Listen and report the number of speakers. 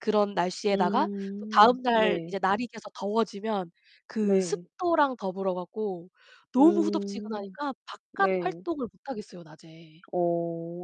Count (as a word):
two